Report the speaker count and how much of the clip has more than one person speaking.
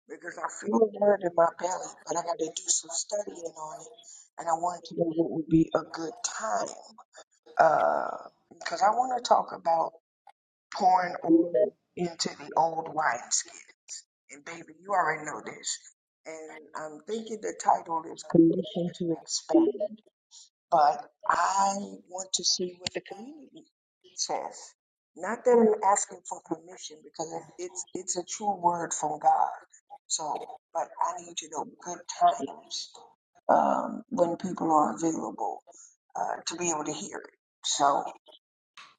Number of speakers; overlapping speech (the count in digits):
1, no overlap